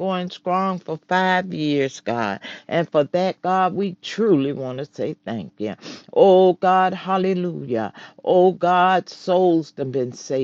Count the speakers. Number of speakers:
1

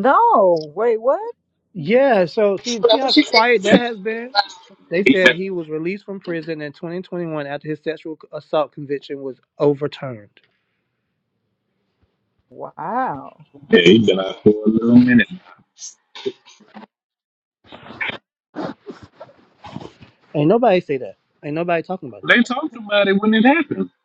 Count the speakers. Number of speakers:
3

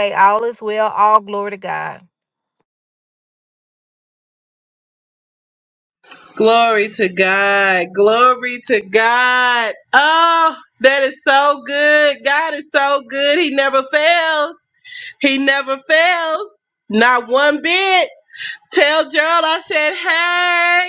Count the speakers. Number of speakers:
2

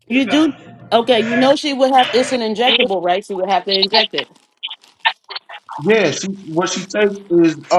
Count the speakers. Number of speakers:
2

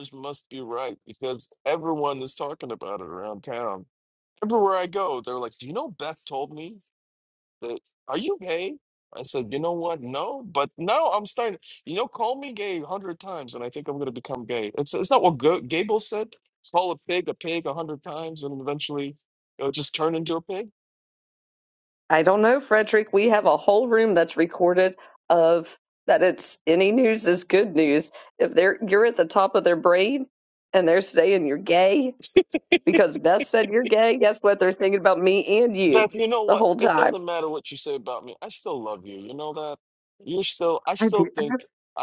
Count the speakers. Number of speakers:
2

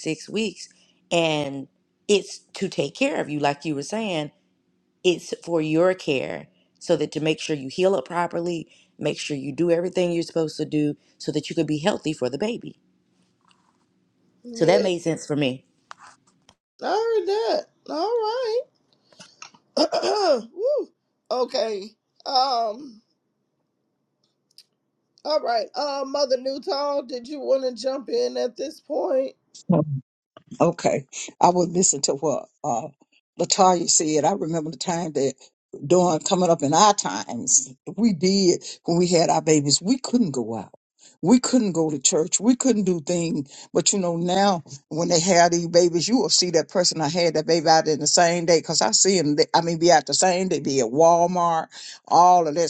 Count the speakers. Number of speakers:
3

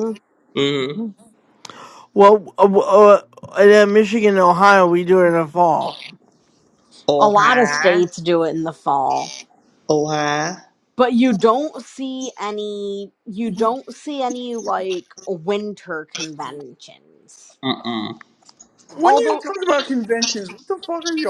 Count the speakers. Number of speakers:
4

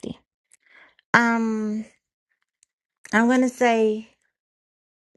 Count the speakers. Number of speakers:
1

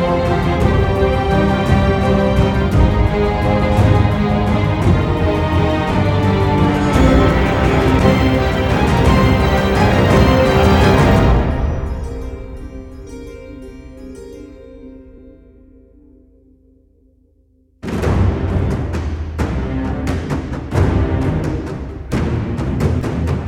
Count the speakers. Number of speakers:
0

